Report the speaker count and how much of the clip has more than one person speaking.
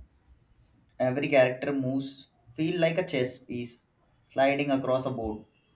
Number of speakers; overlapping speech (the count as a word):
one, no overlap